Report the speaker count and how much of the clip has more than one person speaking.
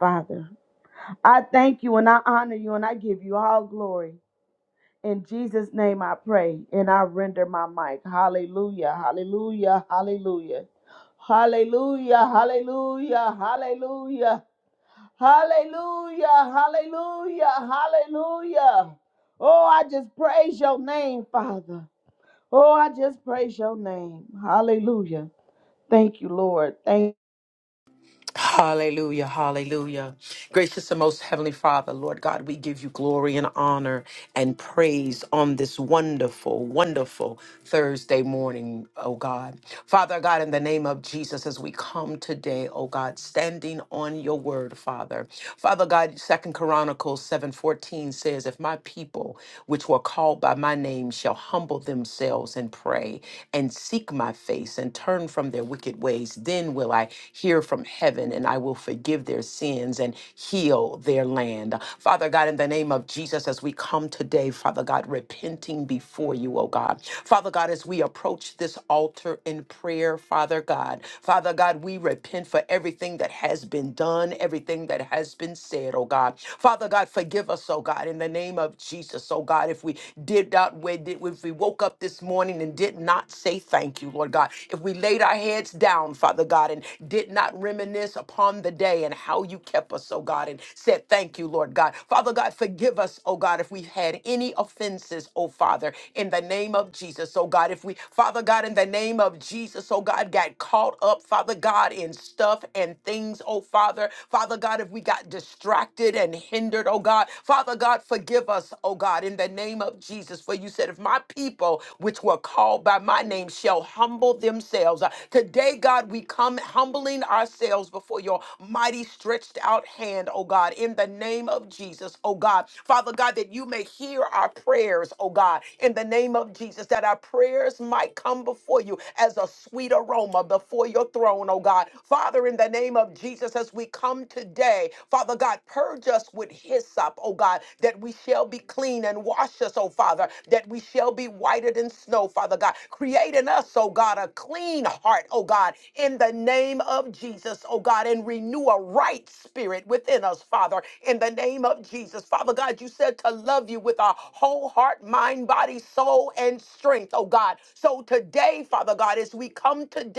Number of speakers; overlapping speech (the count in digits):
2, no overlap